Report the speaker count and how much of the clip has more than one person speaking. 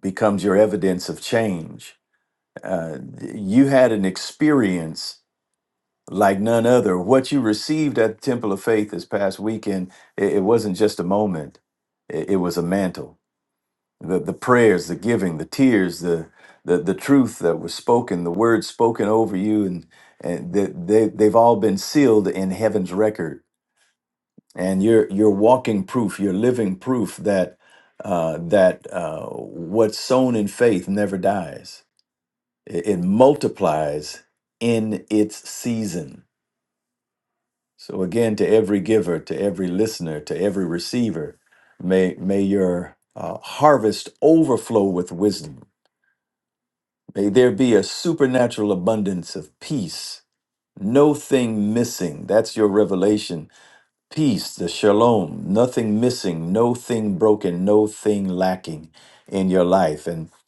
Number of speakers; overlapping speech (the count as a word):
one, no overlap